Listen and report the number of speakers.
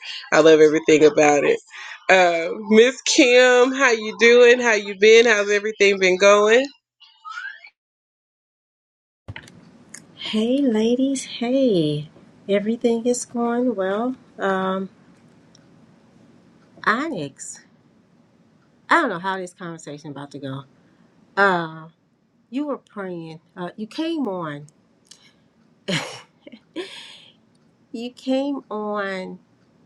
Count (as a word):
two